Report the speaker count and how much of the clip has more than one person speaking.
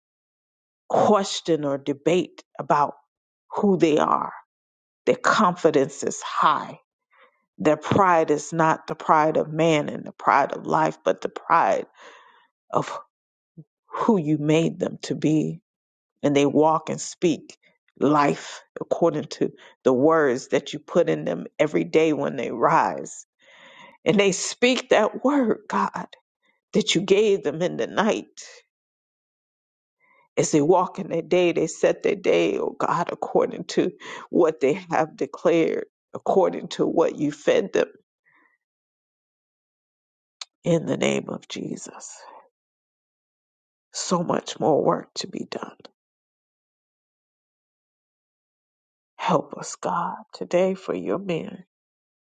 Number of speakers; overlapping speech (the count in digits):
1, no overlap